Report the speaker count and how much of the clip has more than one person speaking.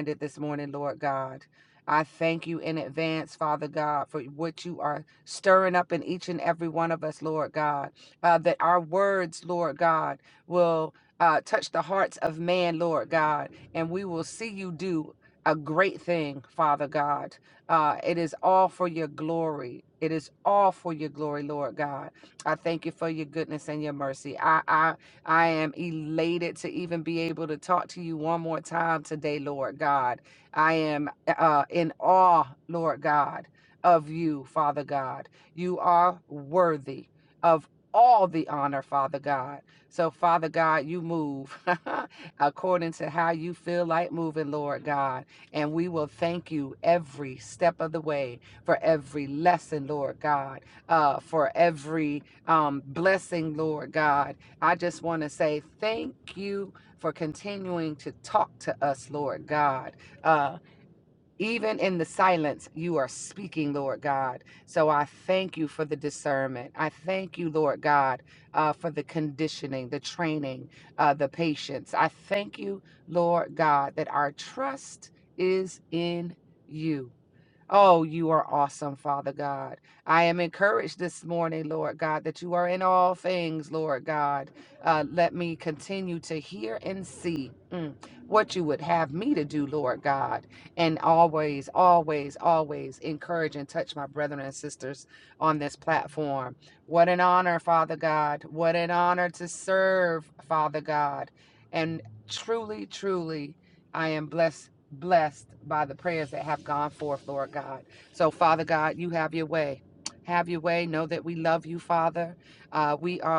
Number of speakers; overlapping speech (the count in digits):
1, no overlap